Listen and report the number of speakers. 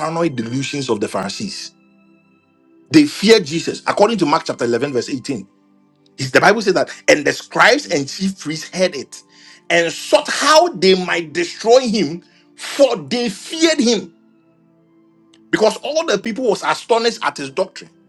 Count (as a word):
one